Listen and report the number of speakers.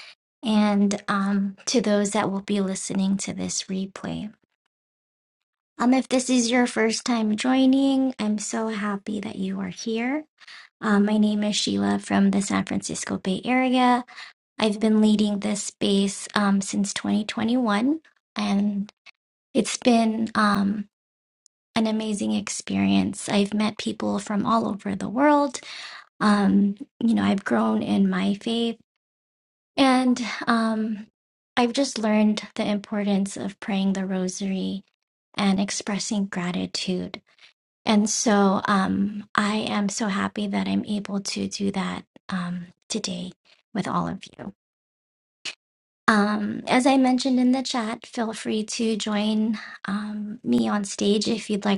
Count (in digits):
1